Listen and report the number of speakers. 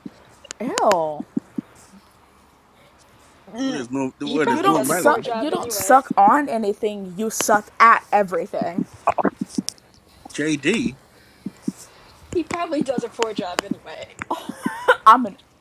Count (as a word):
three